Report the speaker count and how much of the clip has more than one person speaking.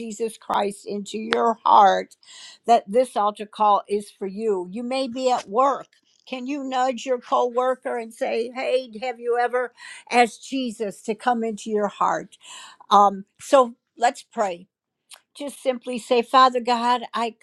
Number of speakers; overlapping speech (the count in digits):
1, no overlap